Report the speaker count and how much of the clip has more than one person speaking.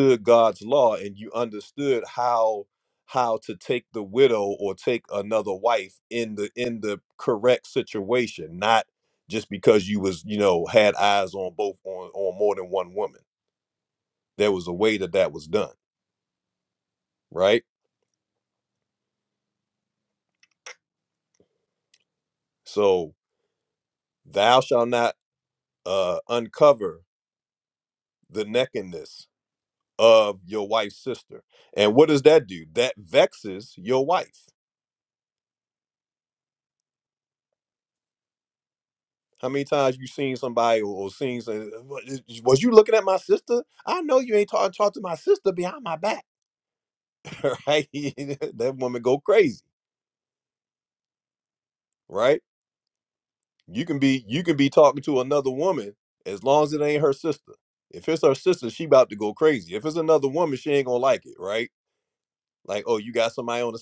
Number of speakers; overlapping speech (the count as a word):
one, no overlap